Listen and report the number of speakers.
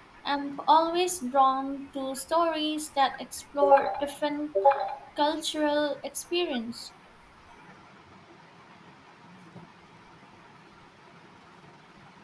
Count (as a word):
one